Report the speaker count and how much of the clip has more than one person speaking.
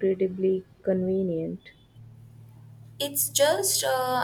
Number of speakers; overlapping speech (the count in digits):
2, no overlap